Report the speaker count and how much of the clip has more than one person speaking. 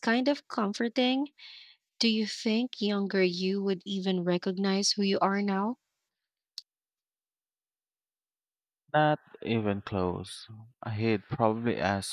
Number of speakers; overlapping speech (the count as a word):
two, no overlap